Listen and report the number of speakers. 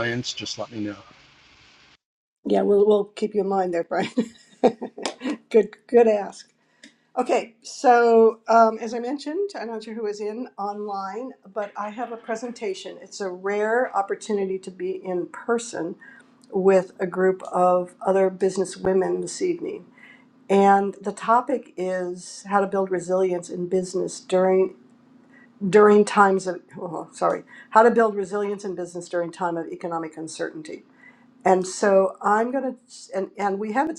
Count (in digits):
2